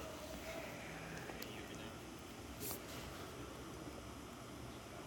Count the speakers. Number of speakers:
0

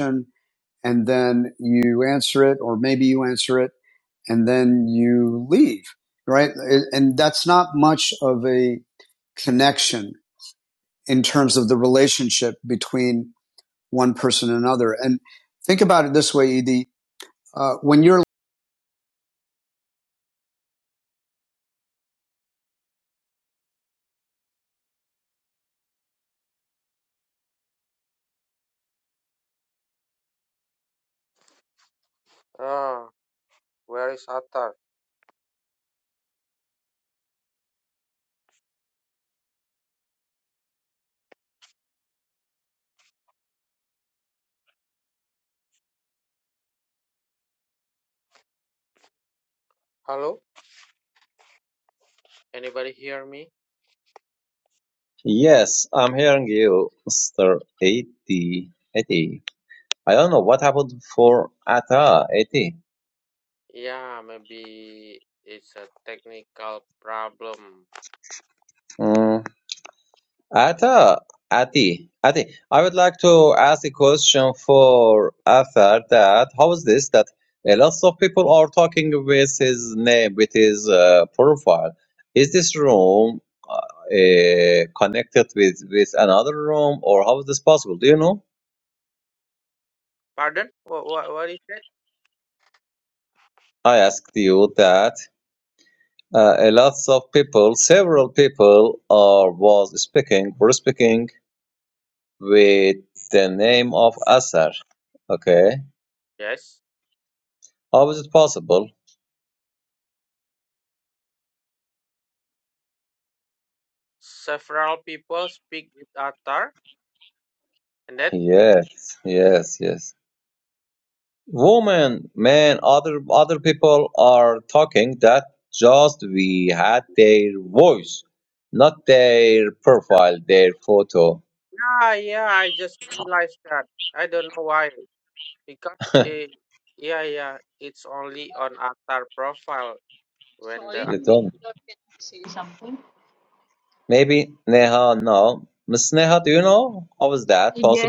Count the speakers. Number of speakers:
4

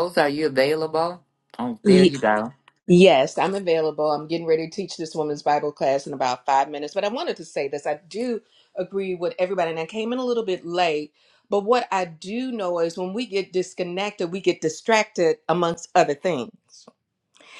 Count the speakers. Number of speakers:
2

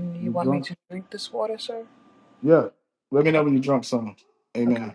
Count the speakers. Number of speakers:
2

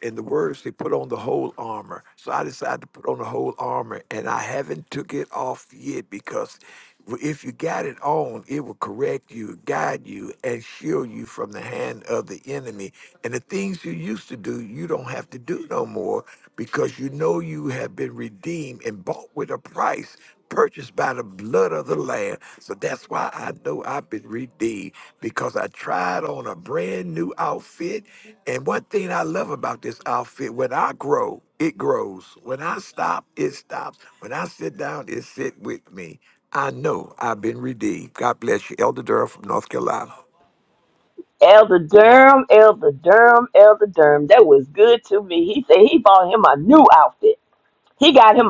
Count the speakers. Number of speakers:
2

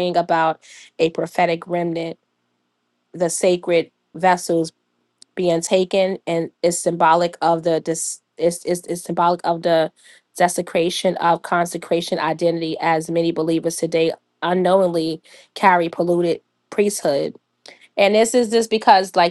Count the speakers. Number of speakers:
1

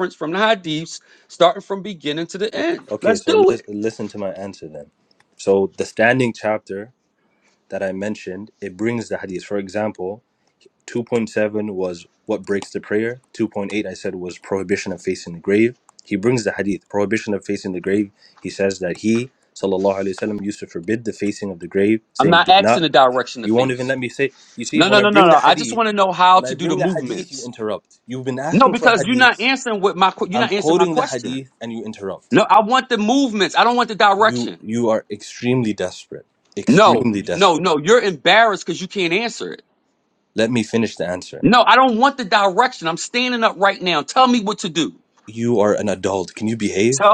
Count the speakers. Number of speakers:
2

